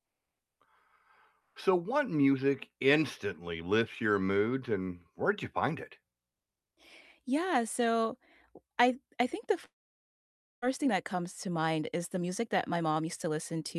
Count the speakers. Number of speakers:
2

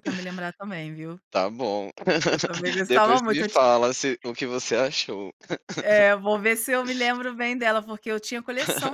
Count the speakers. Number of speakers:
2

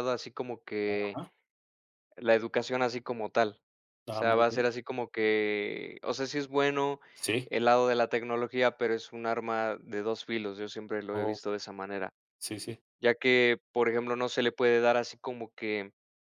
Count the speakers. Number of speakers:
2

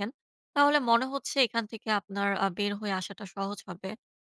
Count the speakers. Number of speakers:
1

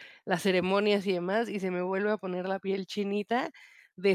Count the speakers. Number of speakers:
1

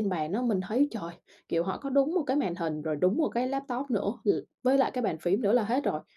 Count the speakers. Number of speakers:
1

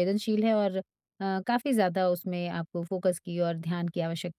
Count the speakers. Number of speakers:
1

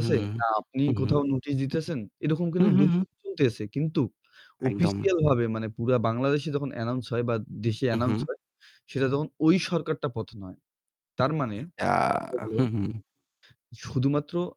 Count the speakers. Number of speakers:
2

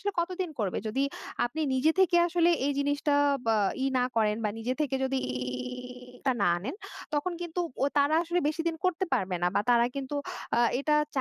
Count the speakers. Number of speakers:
1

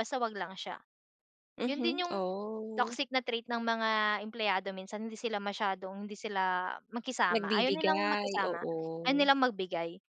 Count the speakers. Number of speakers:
2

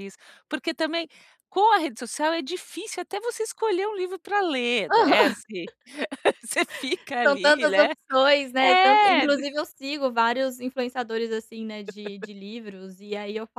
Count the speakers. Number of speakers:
2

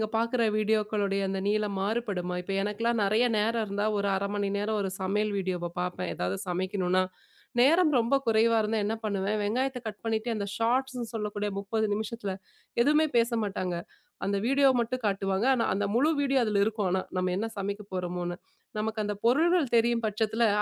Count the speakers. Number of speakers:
1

